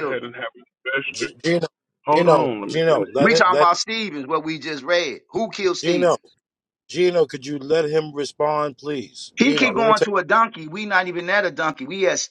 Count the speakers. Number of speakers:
three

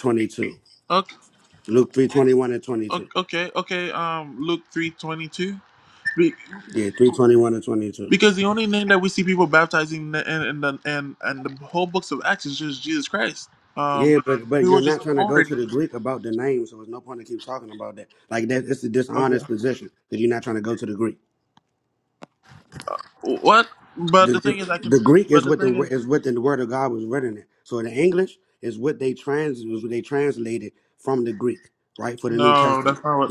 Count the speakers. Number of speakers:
two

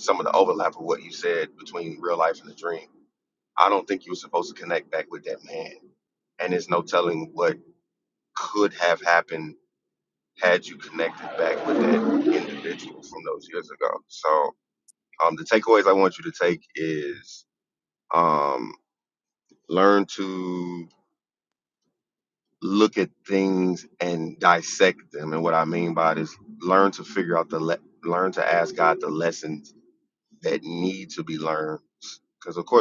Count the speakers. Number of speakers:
one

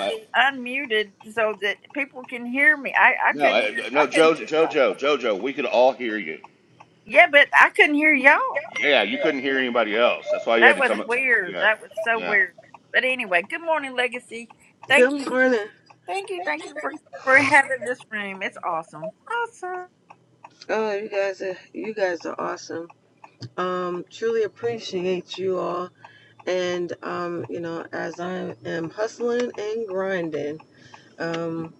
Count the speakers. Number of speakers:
three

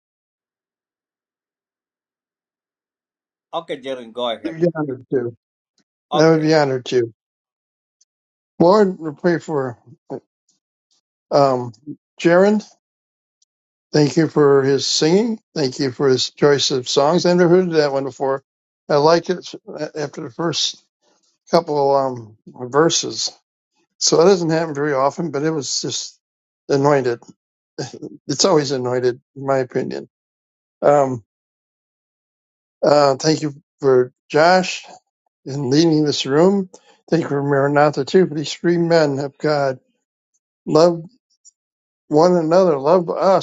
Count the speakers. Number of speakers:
two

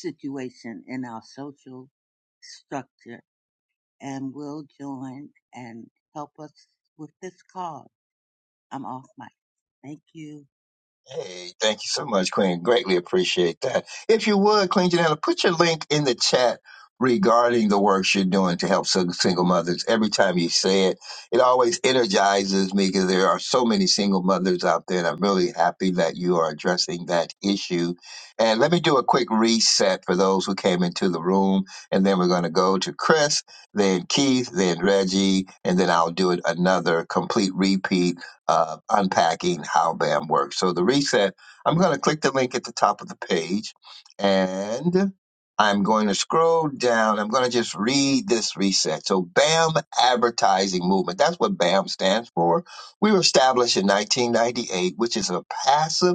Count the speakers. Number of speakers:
two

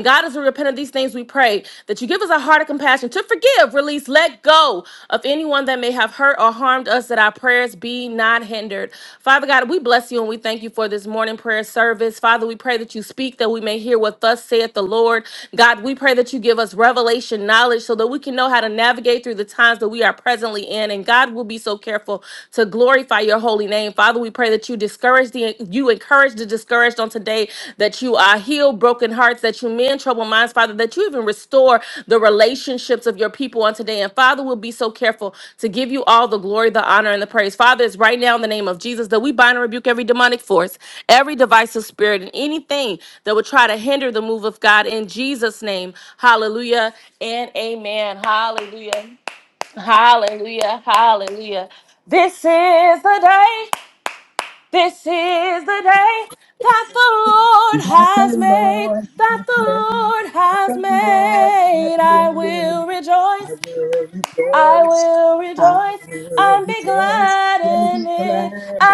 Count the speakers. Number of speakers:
two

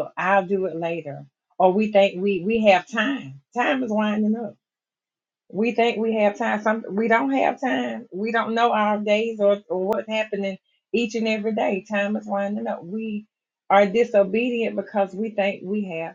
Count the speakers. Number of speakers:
one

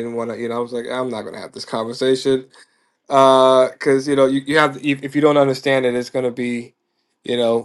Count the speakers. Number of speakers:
one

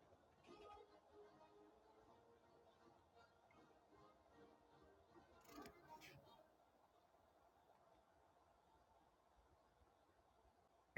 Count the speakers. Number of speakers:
zero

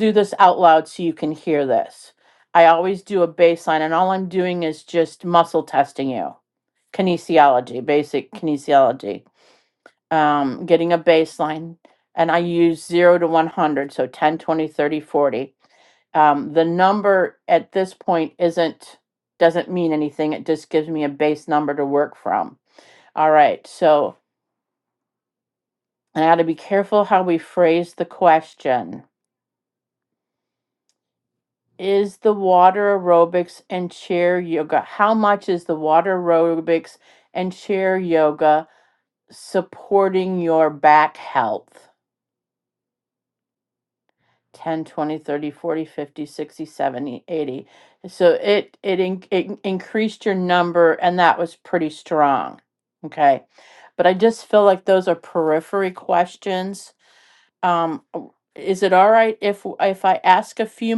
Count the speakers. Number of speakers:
one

